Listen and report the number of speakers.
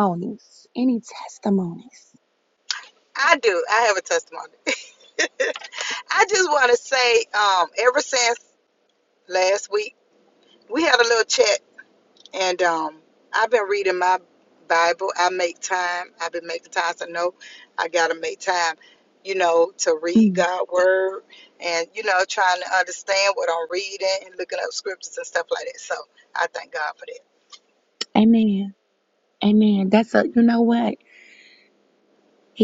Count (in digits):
2